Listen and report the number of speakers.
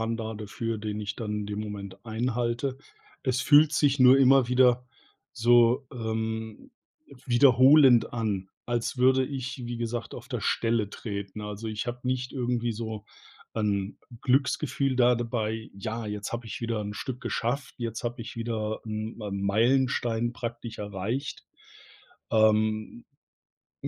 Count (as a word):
one